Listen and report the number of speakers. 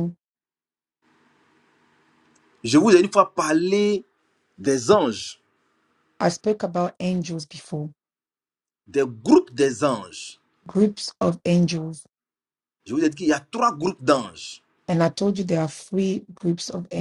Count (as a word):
two